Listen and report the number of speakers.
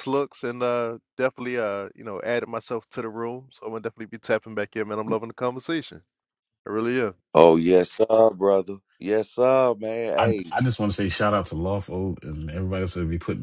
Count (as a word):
three